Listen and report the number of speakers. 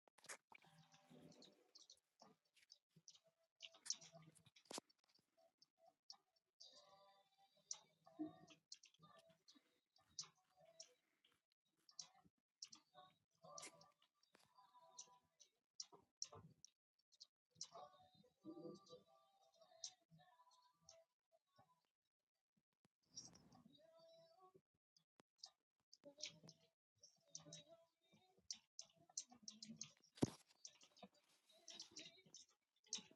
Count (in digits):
0